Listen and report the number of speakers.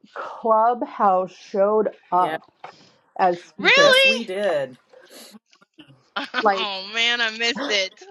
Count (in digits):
3